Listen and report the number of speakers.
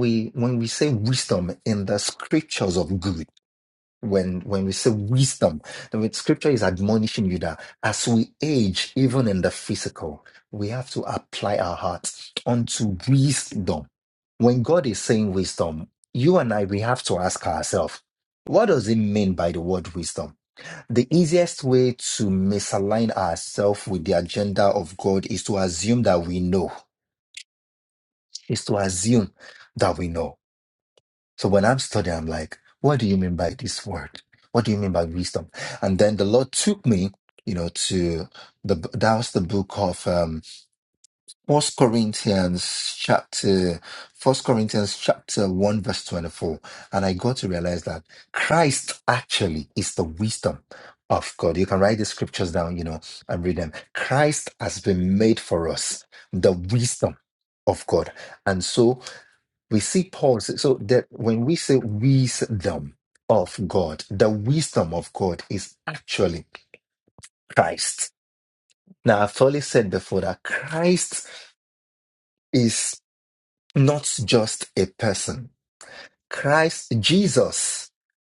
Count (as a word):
one